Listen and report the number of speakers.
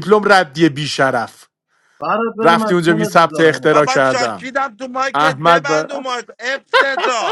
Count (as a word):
three